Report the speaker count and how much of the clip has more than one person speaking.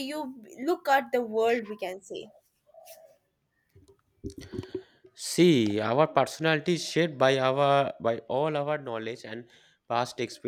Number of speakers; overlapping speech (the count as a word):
two, no overlap